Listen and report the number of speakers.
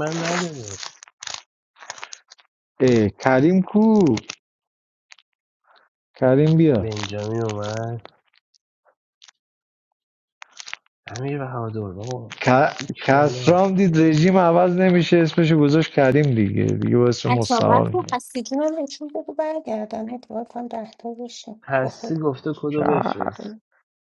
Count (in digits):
3